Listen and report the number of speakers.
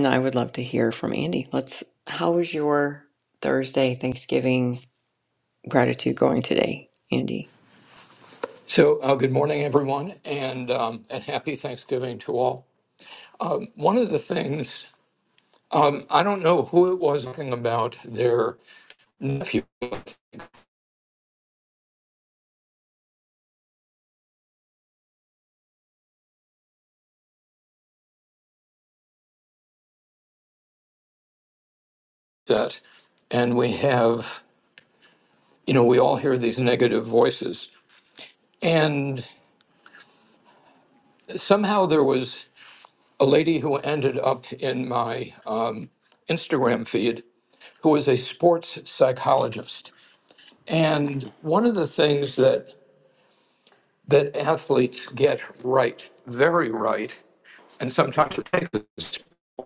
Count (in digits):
2